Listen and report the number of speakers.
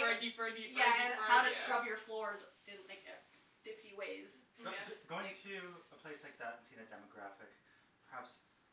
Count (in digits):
3